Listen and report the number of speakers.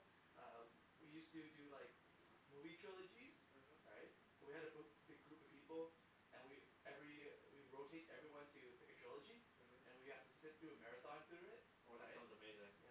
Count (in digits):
2